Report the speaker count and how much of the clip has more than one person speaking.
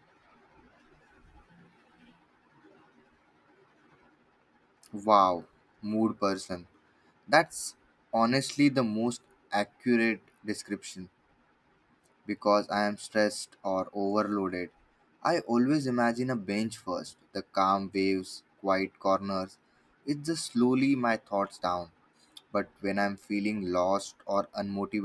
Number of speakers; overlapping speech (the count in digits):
1, no overlap